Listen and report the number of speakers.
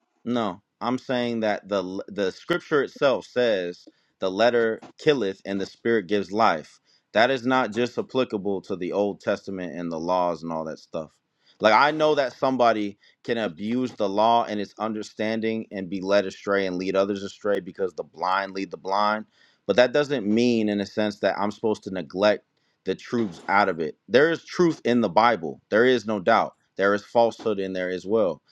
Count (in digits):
1